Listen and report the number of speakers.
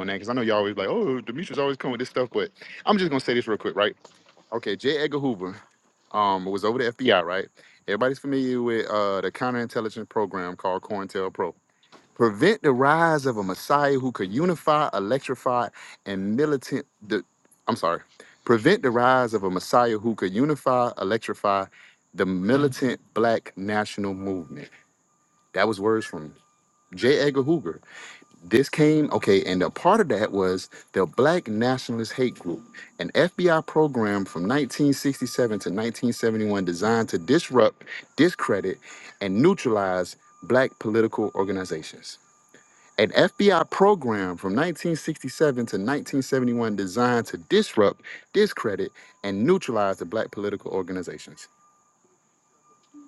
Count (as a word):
one